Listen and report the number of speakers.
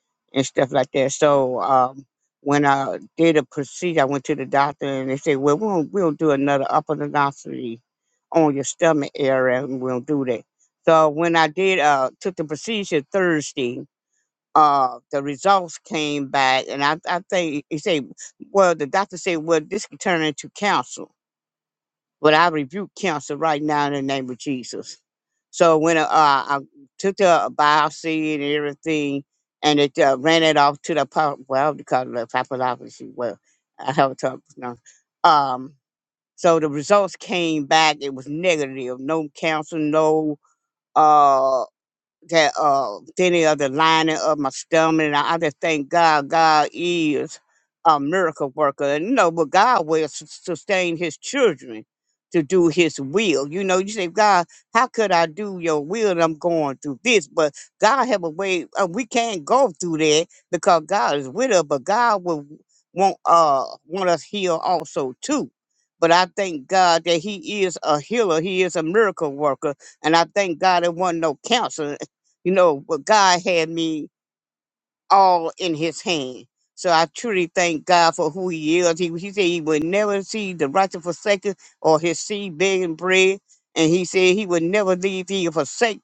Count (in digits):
1